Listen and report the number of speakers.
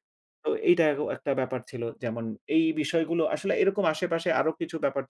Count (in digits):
1